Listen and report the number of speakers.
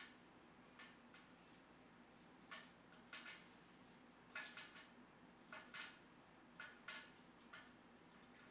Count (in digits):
0